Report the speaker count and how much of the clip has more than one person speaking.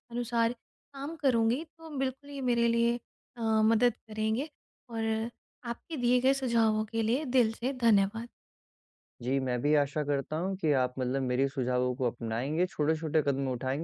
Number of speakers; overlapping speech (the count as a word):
two, no overlap